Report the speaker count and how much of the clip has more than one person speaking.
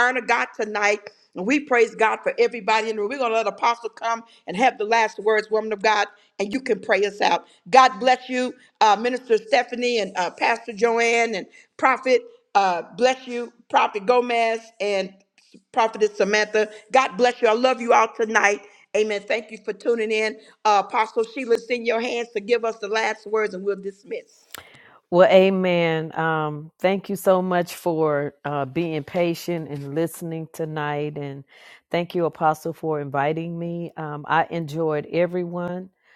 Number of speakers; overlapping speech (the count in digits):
2, no overlap